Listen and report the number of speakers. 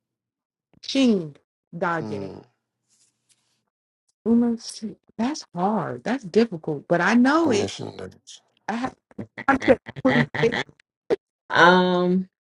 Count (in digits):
3